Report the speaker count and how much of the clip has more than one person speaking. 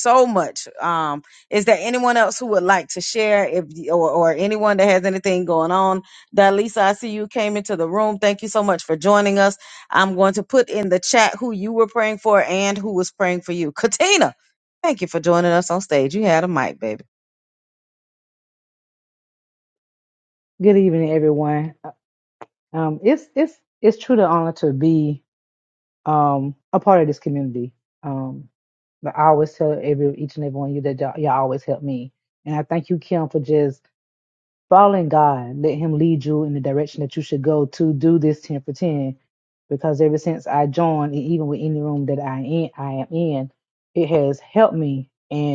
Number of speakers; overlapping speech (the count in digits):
2, no overlap